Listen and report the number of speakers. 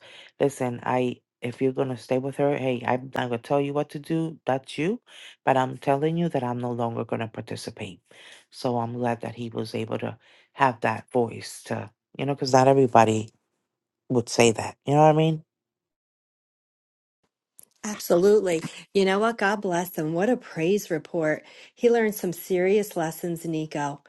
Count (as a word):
two